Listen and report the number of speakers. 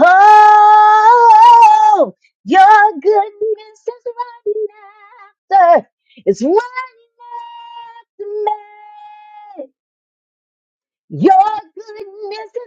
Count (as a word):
one